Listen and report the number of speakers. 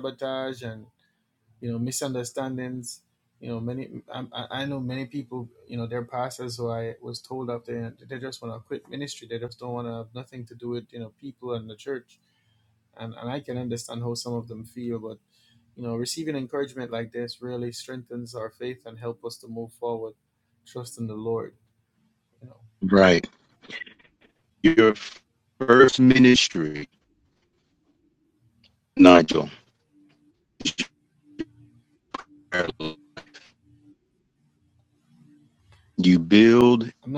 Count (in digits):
2